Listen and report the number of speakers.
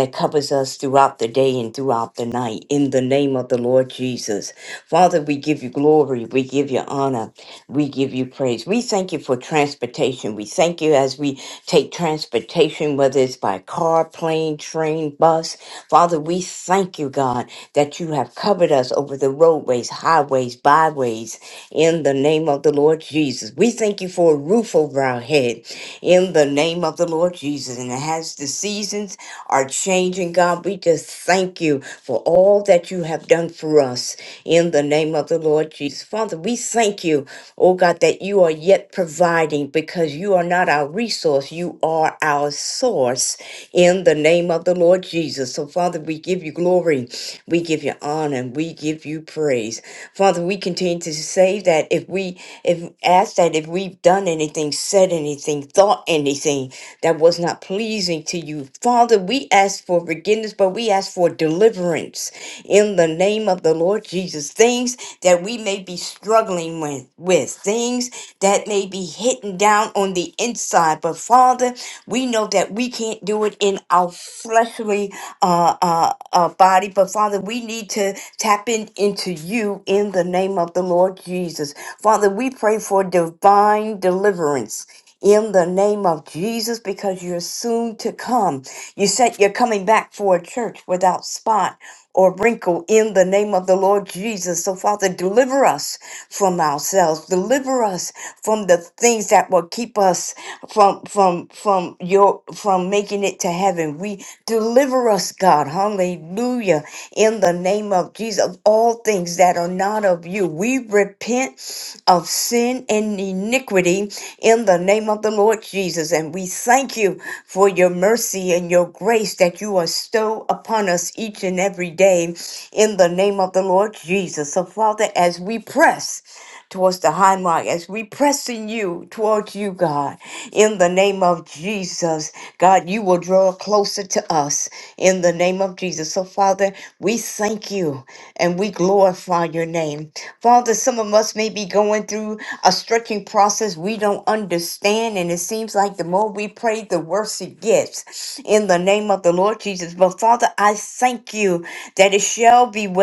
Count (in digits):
1